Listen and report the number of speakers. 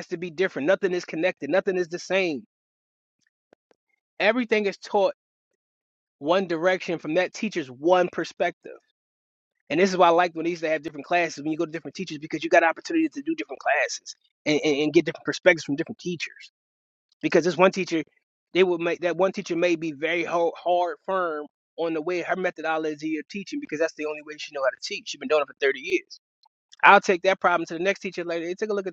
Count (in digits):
1